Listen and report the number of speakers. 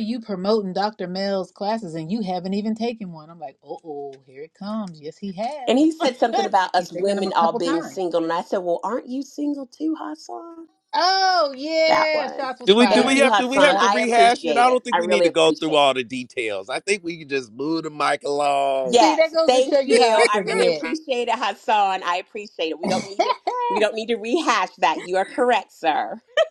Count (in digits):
3